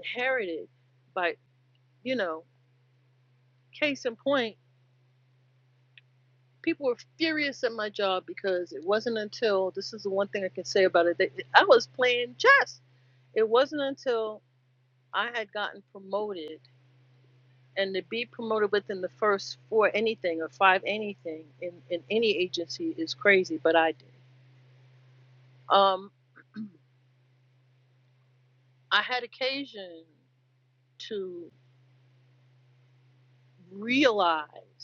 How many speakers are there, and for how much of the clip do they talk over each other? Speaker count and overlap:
1, no overlap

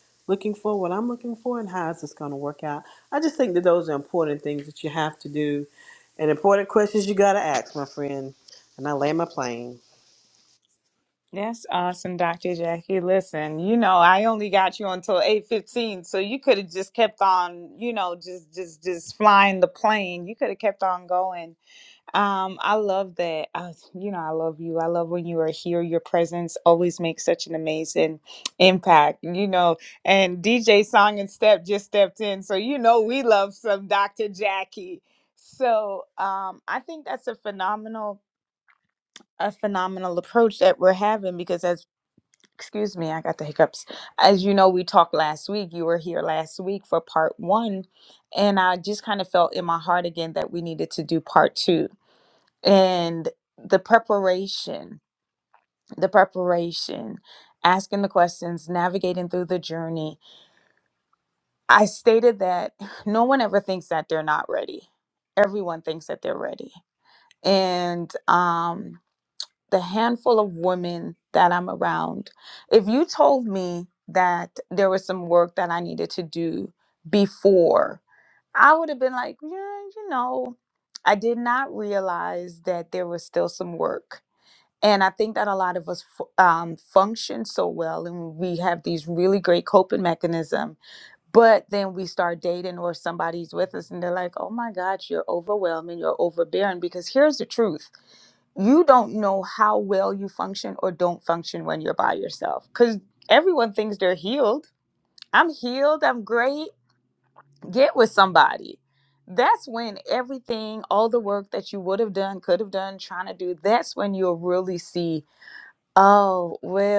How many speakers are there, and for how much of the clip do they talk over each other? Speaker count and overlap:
2, no overlap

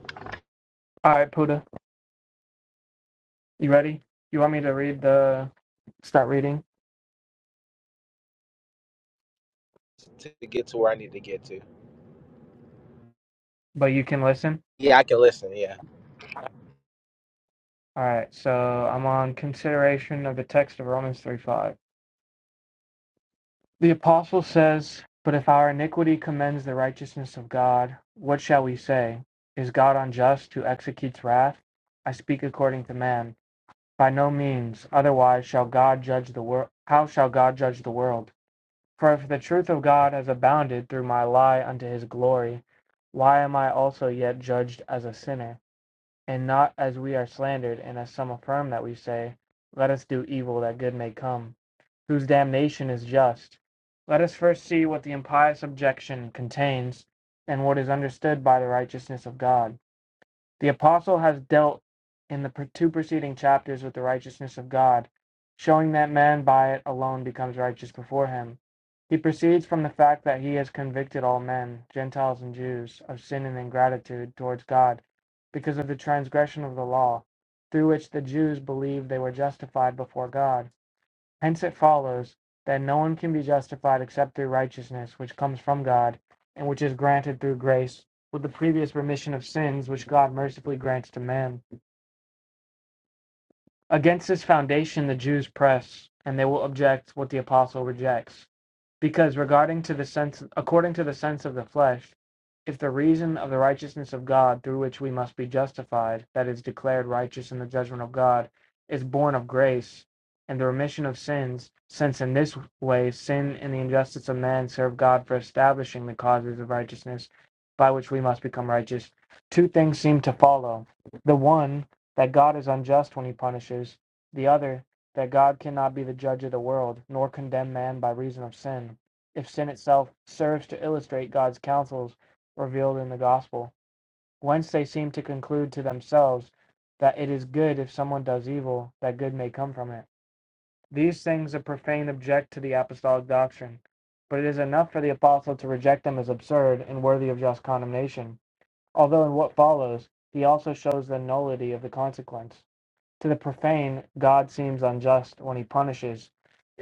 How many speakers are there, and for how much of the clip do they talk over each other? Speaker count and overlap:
2, no overlap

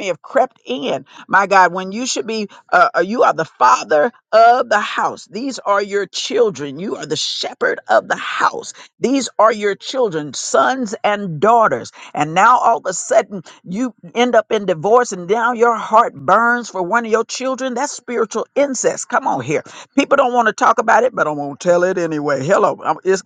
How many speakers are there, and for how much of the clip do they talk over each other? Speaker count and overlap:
1, no overlap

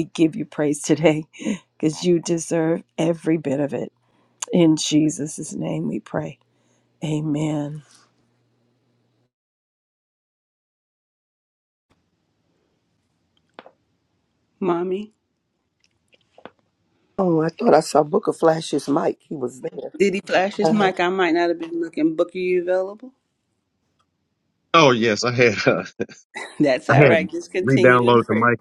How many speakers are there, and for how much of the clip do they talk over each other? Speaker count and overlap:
4, about 5%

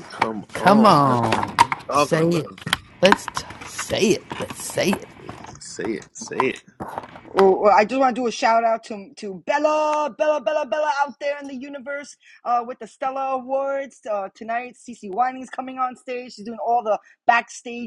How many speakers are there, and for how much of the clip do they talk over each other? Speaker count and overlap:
3, about 7%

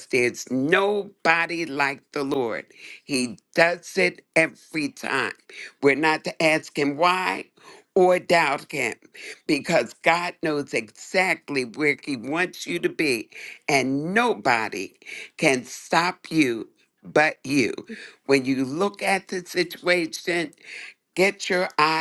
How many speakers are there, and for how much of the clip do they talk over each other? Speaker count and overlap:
1, no overlap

